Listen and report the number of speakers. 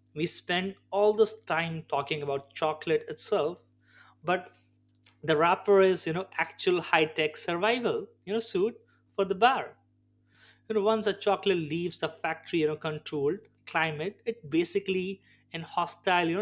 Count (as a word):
one